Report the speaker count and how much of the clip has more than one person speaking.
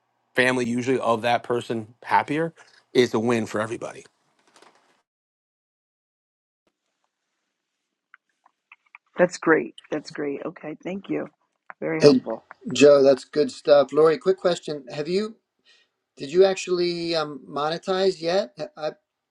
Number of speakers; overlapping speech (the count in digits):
3, about 1%